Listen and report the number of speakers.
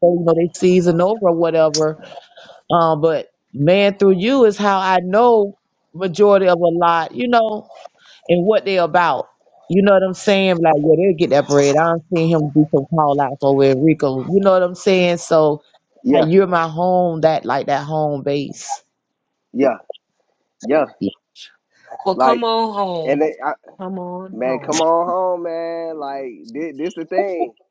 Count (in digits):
3